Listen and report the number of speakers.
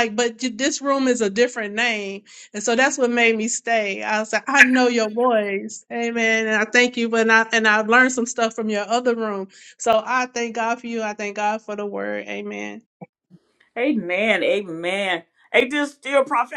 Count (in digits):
2